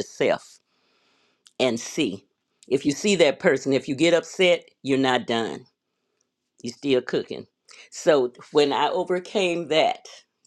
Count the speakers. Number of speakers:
1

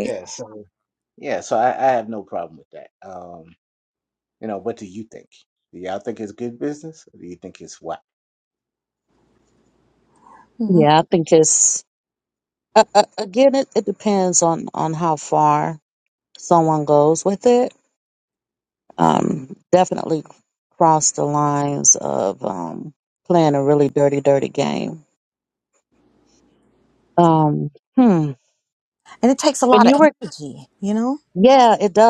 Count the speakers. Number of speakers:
3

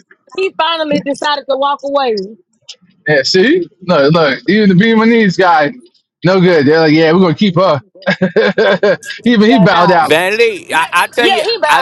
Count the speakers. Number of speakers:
3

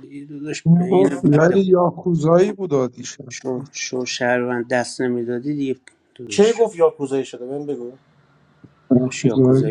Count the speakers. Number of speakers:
3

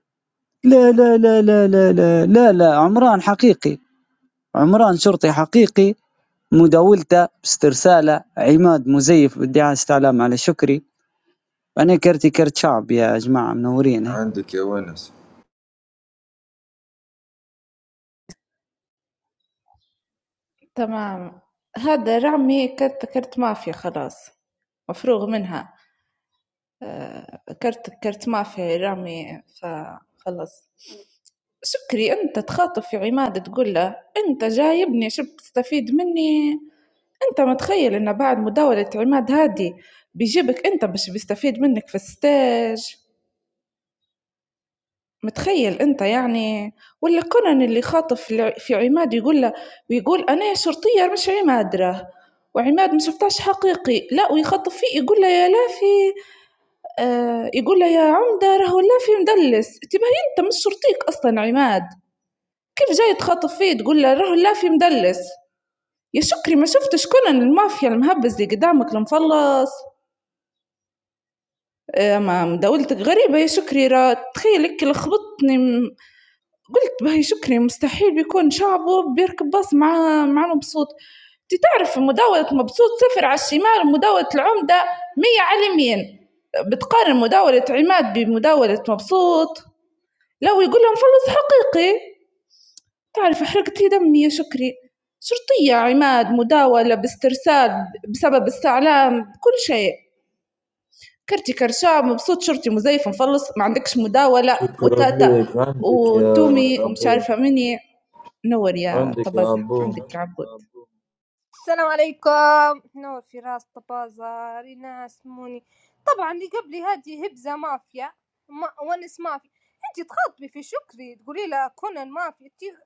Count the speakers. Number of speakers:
4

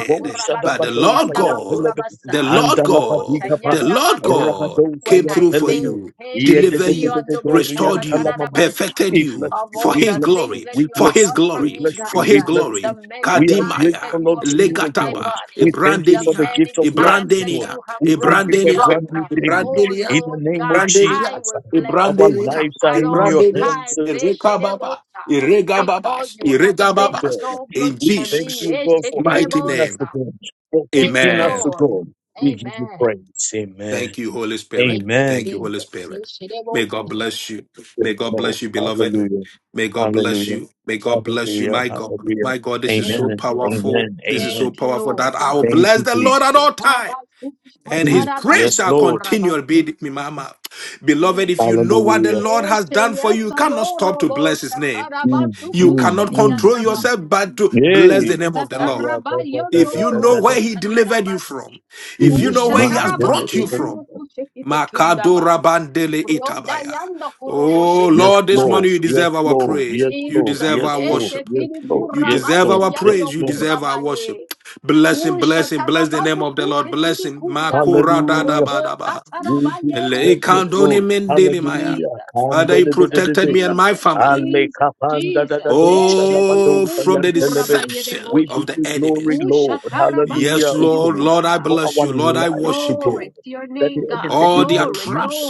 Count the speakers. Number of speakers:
3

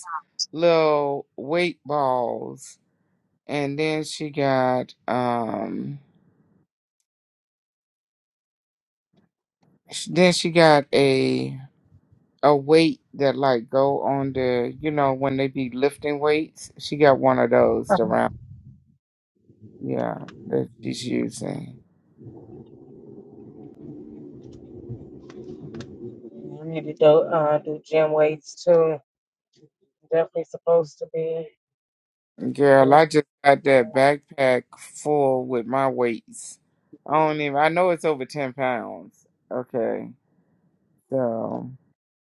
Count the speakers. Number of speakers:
2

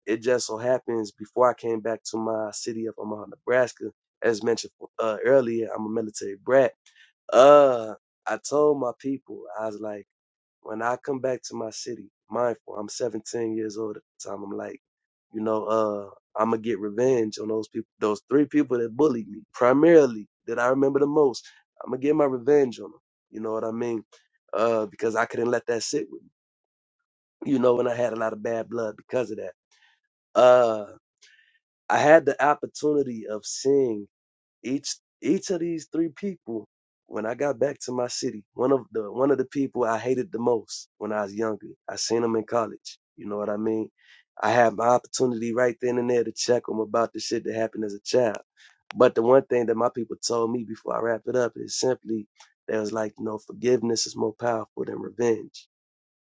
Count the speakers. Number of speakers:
1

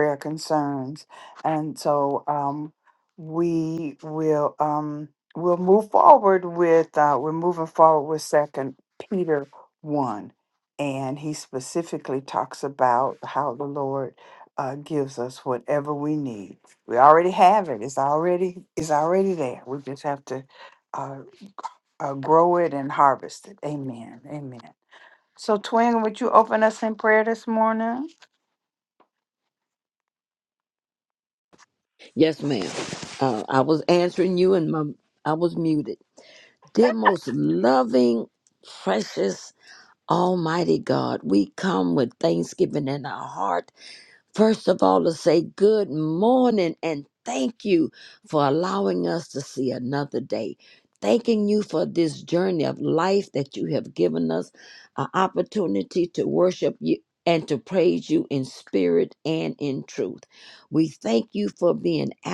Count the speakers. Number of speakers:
2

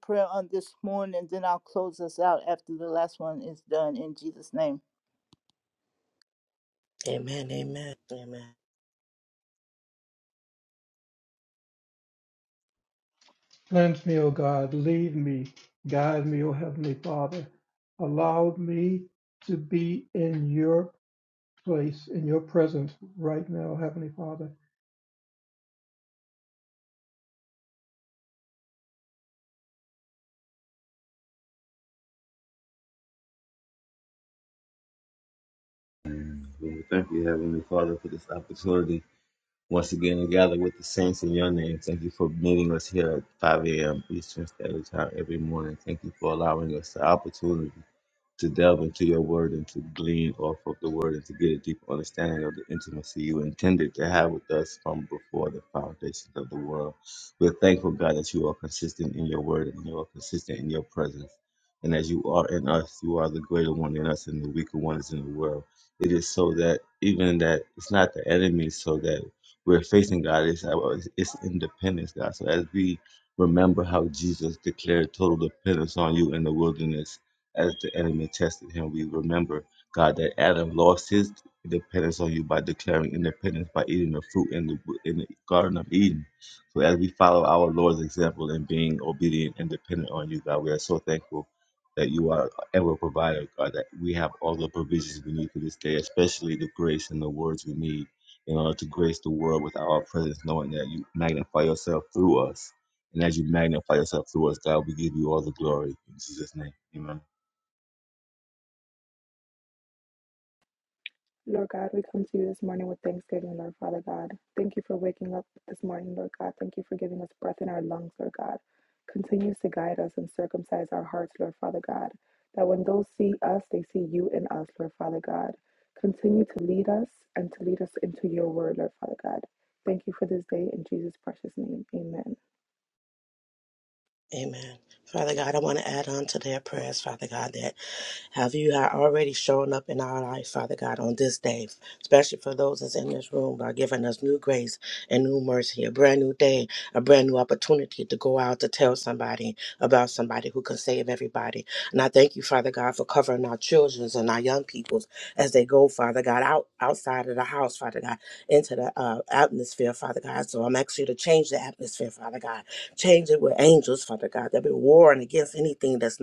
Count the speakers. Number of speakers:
5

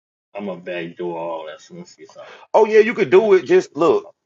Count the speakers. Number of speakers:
2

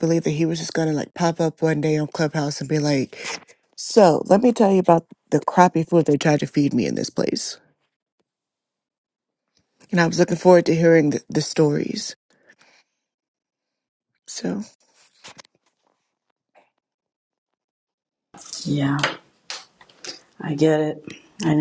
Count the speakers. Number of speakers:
2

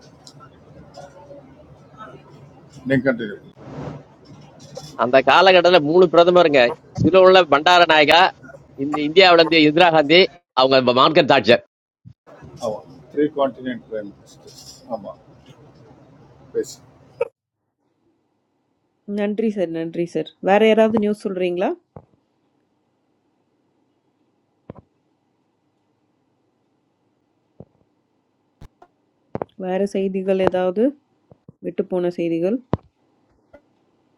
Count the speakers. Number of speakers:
3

